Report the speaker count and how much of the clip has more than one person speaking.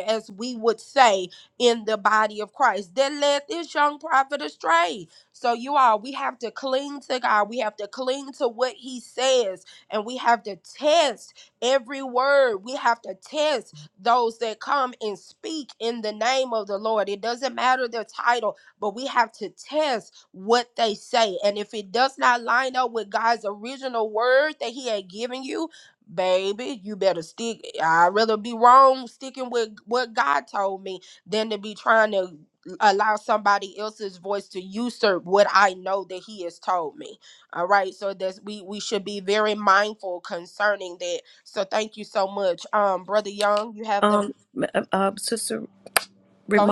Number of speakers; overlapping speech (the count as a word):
two, about 1%